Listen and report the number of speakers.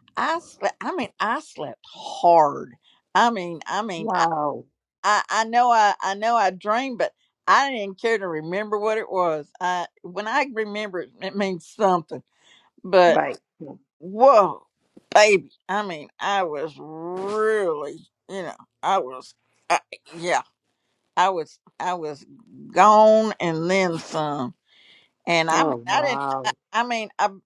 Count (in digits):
2